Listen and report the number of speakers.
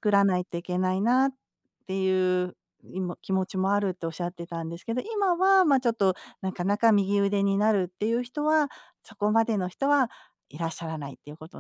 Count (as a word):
one